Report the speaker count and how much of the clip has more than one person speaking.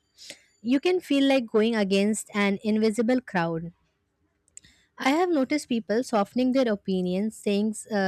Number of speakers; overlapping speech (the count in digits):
1, no overlap